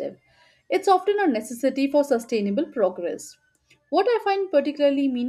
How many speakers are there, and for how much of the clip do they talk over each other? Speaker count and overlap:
one, no overlap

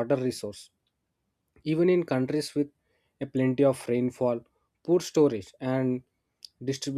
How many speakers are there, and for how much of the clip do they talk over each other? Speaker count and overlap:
one, no overlap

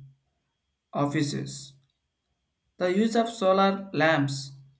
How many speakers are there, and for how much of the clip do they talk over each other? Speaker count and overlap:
one, no overlap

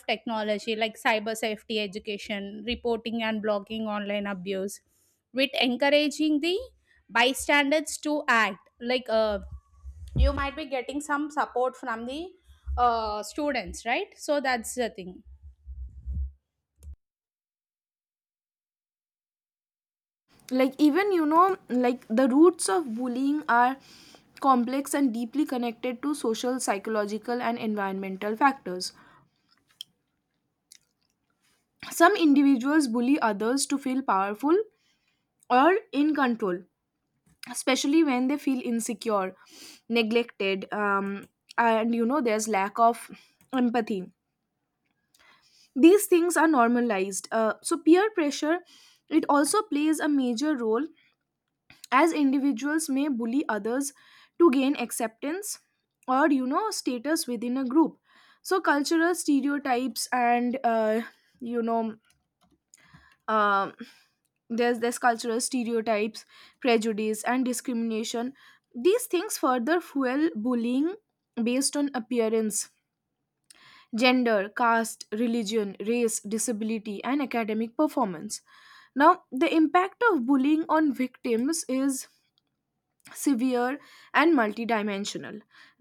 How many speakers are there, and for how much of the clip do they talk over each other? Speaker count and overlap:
two, no overlap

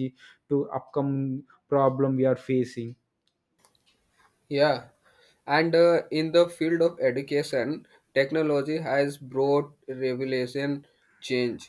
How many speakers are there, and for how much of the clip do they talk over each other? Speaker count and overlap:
two, no overlap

